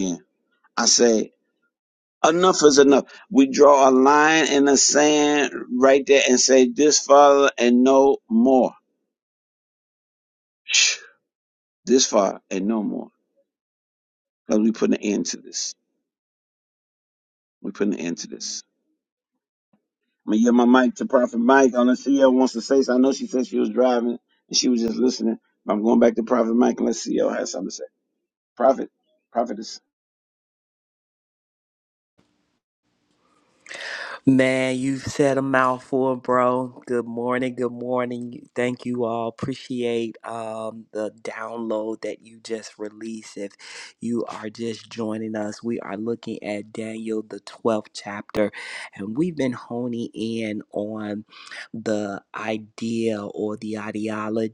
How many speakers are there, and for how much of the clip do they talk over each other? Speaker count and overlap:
2, no overlap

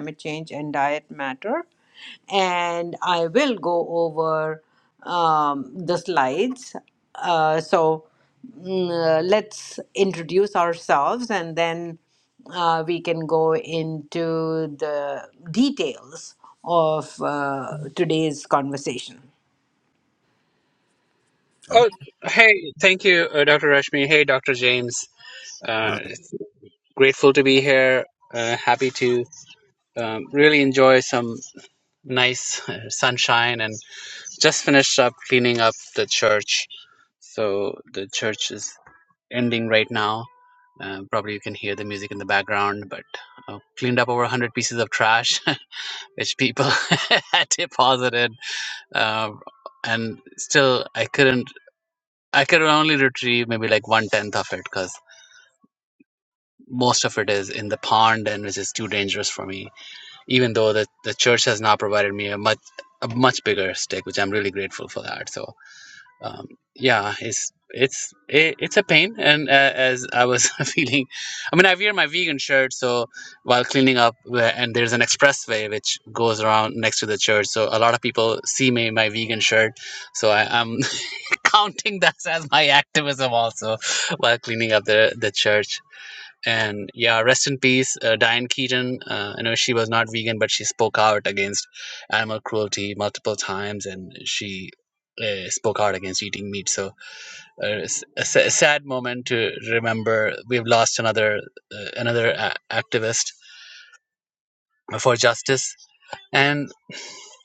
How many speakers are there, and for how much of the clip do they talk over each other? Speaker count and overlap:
2, no overlap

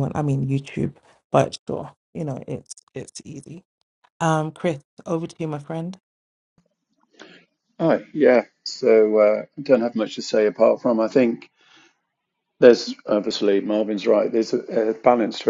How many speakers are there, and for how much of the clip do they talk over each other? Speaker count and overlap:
2, no overlap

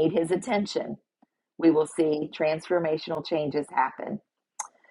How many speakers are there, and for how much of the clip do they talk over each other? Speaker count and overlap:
1, no overlap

